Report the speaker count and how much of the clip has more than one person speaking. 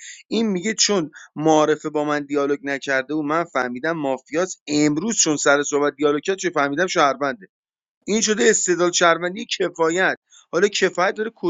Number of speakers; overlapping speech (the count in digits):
1, no overlap